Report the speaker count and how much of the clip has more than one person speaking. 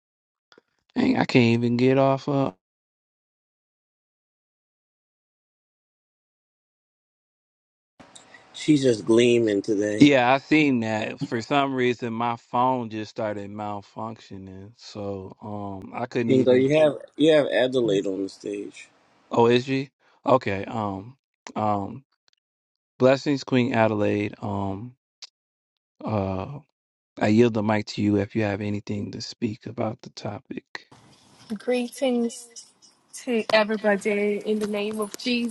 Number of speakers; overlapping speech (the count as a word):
three, about 1%